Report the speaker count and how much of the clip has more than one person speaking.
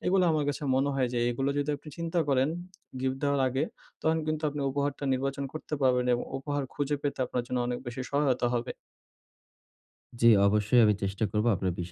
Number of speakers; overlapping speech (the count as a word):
two, no overlap